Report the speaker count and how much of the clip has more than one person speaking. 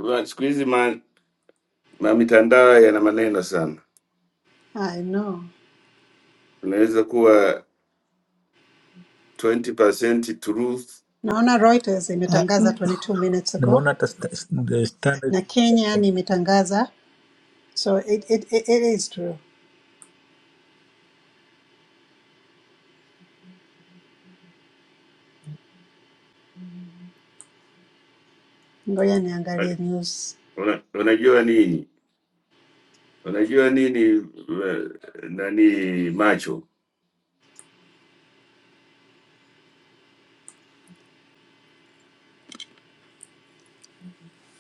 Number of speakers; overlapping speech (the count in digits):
3, about 2%